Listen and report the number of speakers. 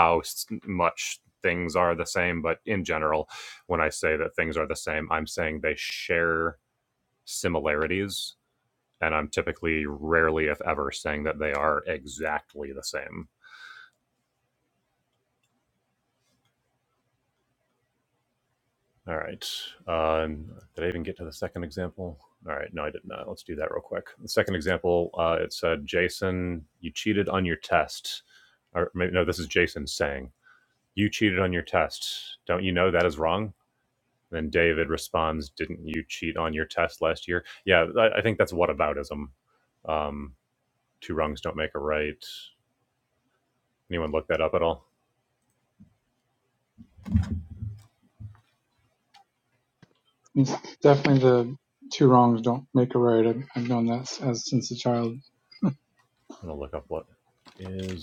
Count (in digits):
2